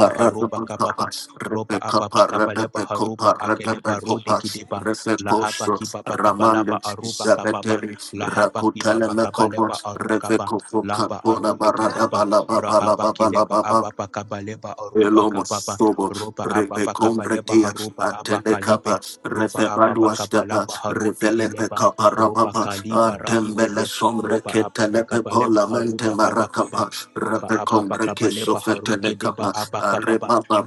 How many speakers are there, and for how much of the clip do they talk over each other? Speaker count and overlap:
2, about 80%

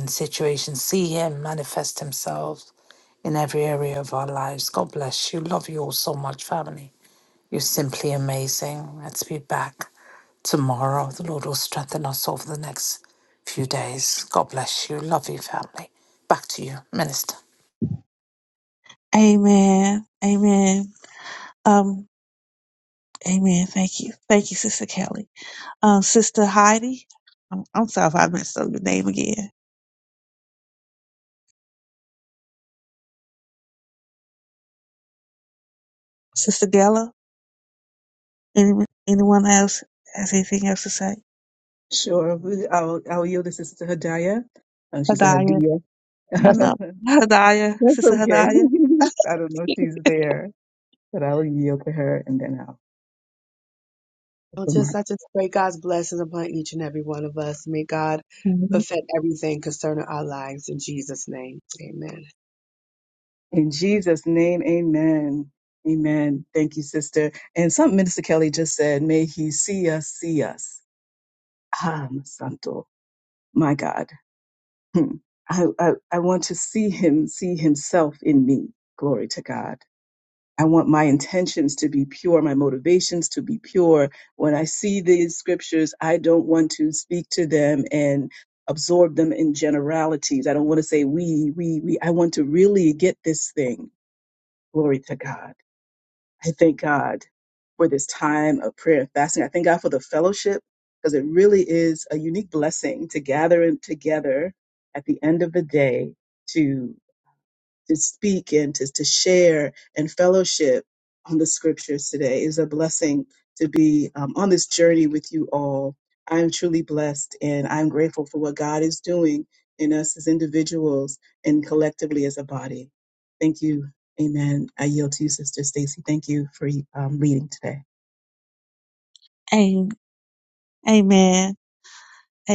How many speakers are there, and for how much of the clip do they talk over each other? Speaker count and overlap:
4, about 1%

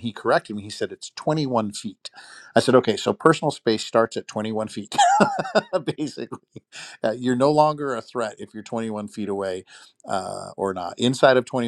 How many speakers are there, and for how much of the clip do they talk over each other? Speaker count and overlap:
1, no overlap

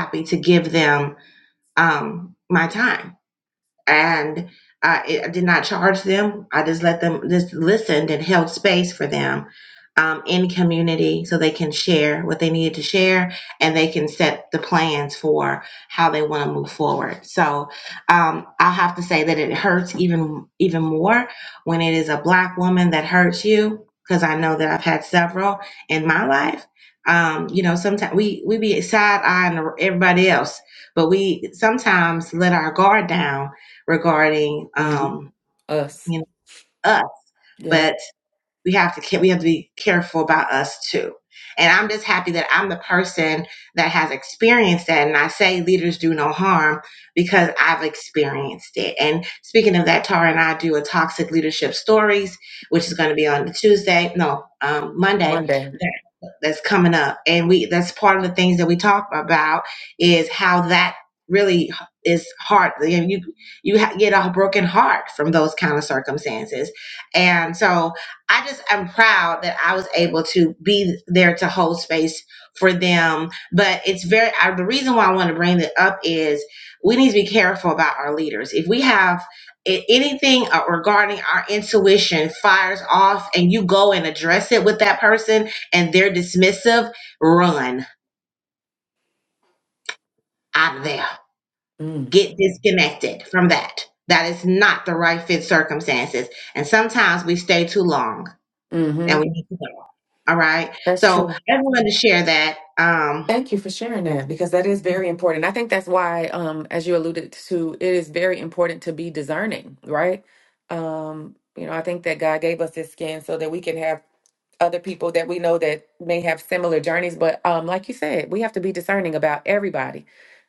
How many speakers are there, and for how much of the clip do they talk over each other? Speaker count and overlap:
2, about 1%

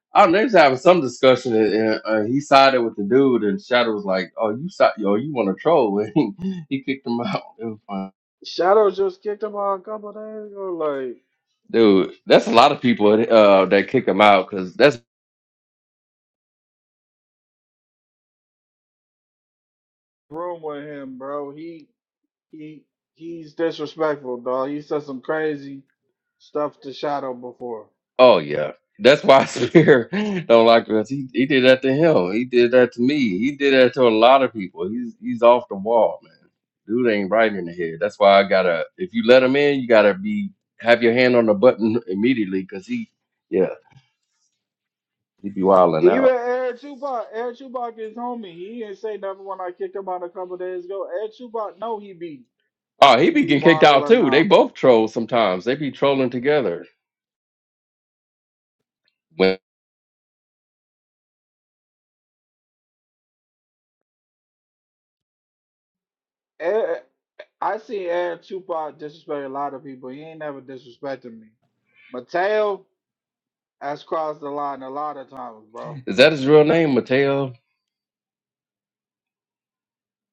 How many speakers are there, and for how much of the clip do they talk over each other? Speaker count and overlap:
2, about 2%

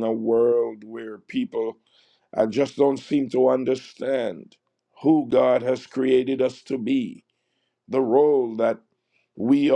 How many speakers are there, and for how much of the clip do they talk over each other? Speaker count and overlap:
1, no overlap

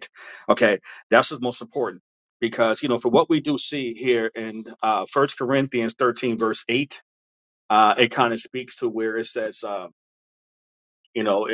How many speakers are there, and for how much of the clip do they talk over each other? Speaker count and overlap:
1, no overlap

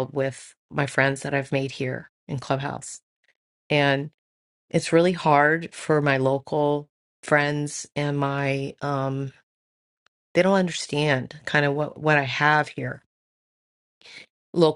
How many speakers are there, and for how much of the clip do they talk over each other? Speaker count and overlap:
1, no overlap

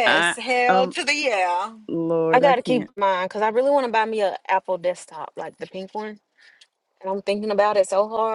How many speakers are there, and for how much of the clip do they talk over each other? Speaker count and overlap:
3, about 13%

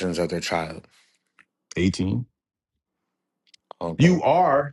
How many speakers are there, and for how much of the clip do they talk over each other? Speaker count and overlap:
2, about 4%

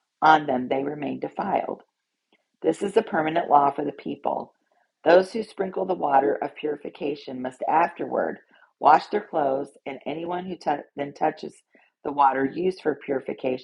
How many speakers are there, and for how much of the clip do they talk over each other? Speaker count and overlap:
1, no overlap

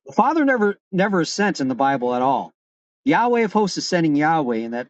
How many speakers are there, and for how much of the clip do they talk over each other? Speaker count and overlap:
1, no overlap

